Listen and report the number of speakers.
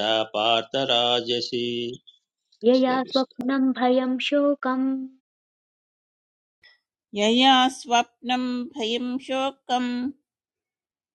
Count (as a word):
three